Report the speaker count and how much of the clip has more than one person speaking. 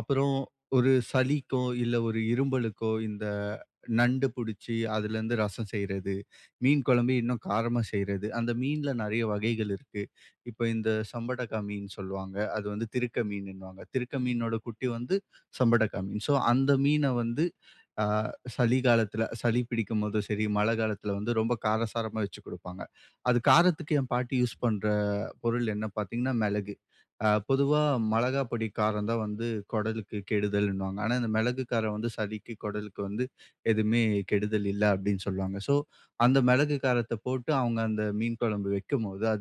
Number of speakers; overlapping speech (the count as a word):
one, no overlap